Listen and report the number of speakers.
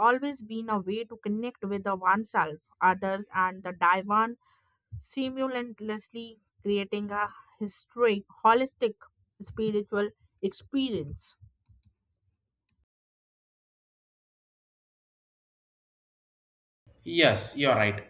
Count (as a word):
two